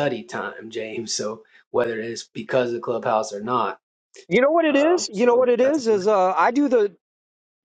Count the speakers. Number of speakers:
2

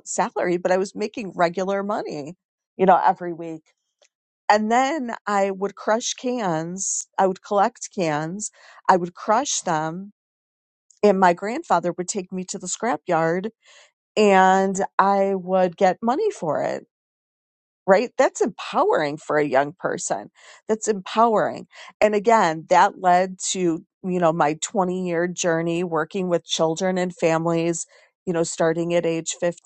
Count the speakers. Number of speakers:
1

